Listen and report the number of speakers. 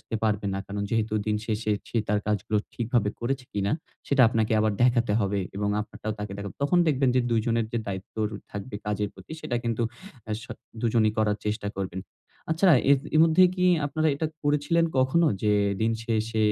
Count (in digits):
1